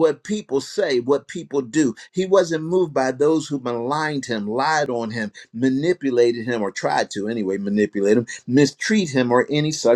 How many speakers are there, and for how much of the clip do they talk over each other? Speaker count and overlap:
one, no overlap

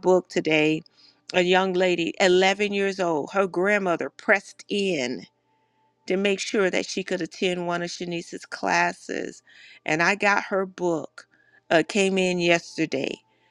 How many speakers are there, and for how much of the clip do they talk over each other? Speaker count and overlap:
one, no overlap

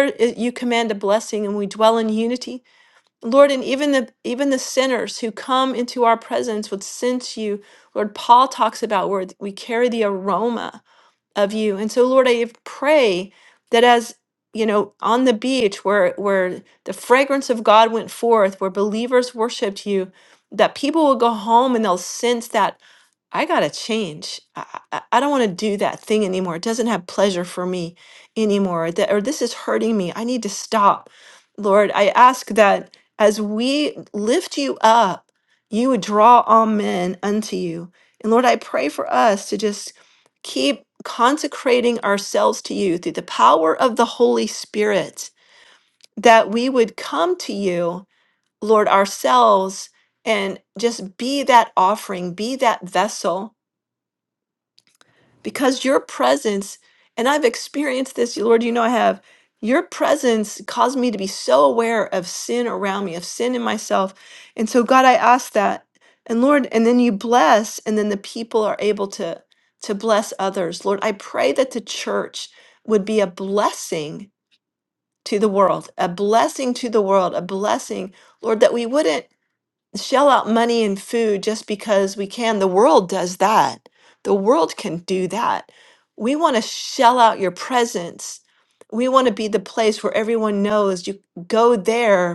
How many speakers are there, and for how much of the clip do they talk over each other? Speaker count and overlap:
one, no overlap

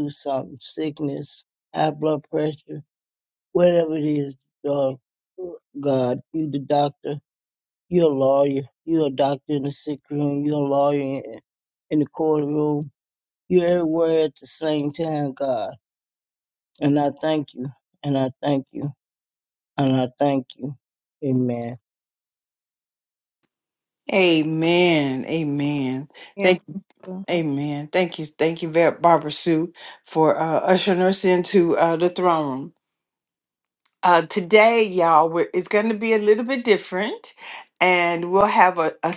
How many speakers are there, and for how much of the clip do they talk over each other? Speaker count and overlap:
two, no overlap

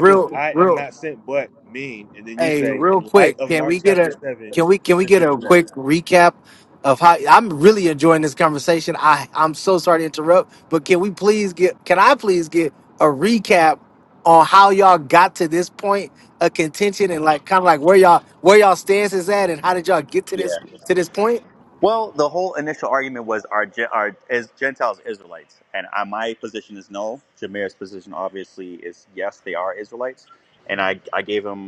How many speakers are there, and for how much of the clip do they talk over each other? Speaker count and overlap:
three, about 11%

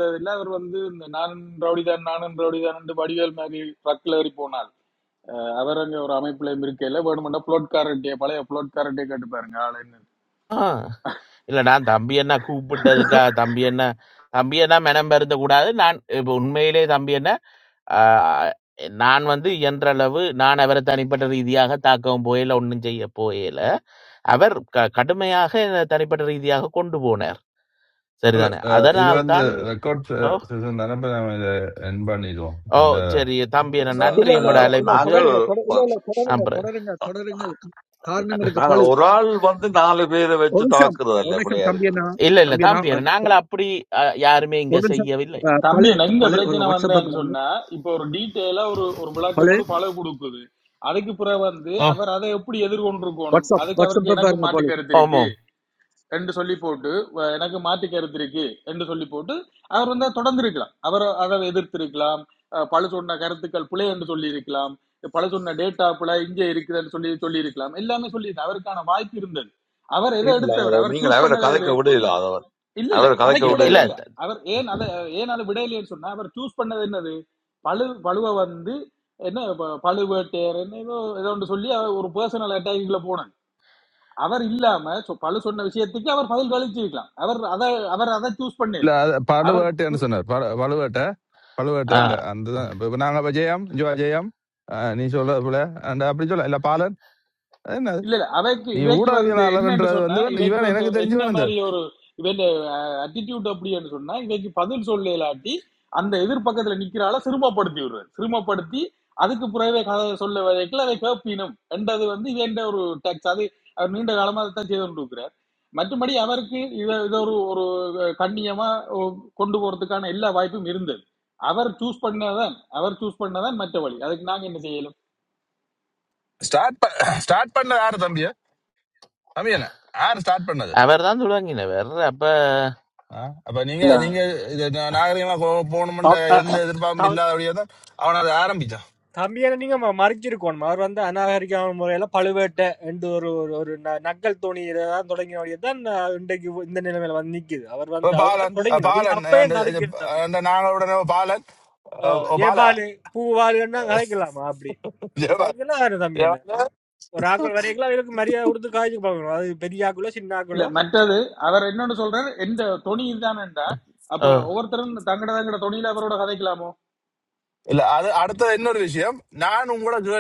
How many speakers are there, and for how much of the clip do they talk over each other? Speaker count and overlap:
six, about 12%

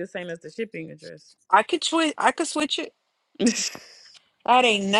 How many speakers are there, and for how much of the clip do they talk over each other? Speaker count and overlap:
two, no overlap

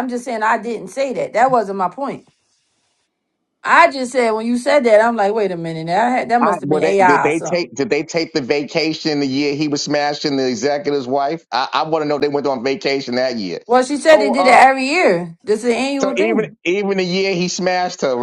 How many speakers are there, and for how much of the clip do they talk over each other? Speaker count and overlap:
two, about 12%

